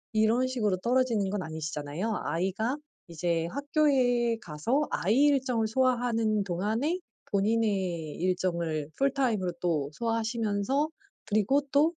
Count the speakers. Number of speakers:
one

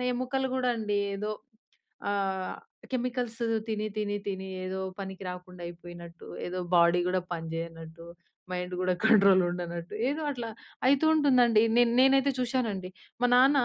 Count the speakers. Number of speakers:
one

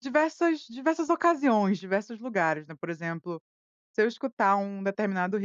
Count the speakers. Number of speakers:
one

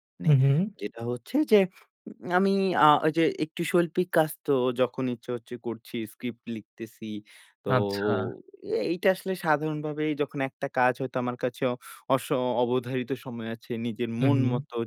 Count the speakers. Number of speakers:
two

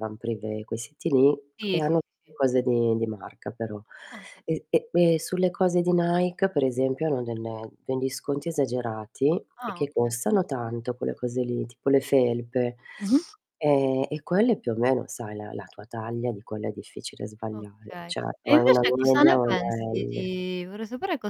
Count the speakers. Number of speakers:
two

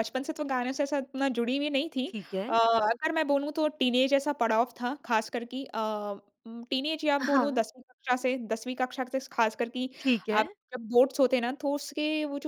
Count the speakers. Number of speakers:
two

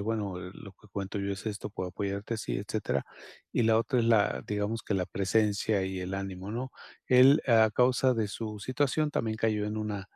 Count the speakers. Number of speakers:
one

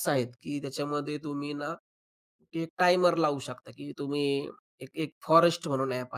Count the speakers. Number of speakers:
one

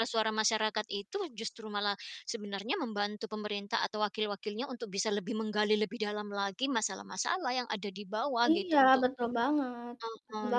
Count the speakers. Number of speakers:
two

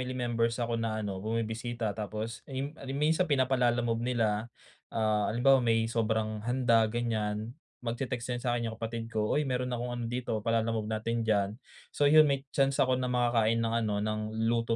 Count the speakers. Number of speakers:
one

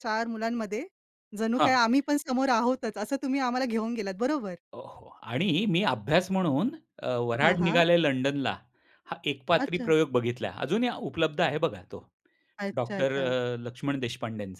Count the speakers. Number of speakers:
two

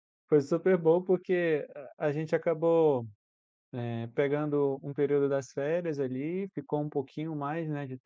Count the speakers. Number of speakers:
one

